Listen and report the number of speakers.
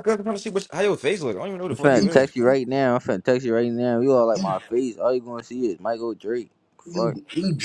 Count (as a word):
three